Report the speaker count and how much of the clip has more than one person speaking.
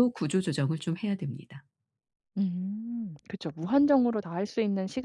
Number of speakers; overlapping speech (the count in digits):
2, no overlap